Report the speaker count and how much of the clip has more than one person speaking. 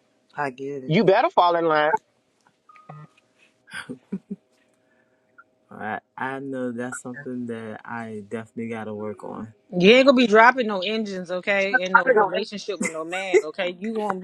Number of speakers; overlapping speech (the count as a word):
three, under 1%